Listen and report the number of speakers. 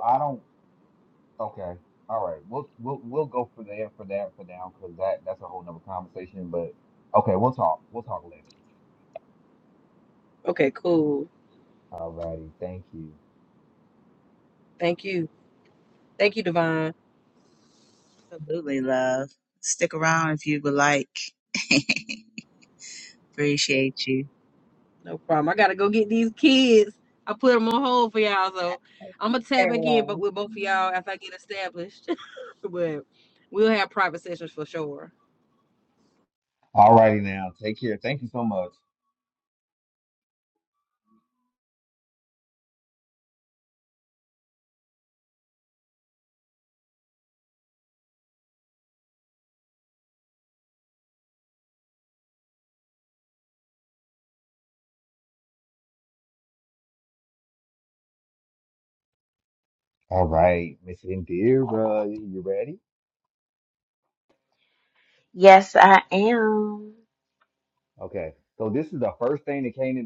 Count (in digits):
4